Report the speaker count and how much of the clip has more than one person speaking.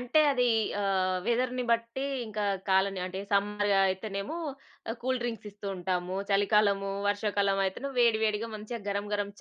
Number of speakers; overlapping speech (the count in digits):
1, no overlap